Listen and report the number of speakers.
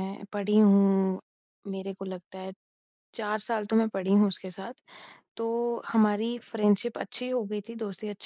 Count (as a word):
one